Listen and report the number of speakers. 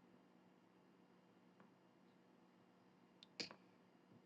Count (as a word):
zero